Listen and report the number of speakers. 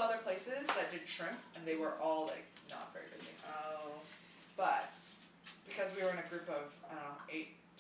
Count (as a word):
two